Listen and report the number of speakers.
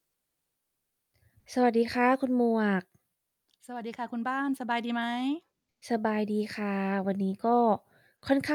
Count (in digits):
2